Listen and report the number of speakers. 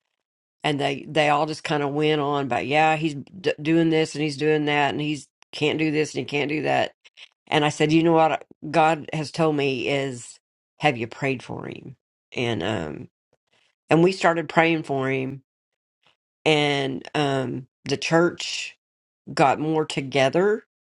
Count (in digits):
1